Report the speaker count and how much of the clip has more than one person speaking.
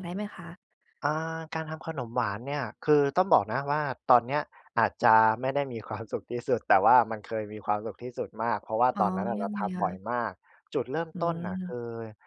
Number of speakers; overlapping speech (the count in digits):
2, about 9%